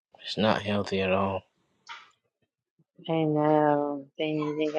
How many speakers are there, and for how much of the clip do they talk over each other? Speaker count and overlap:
two, no overlap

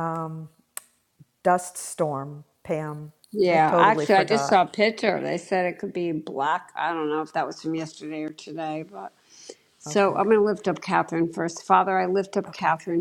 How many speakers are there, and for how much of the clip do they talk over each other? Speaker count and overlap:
two, about 13%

